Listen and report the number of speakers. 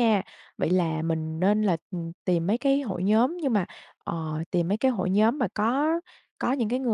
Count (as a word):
one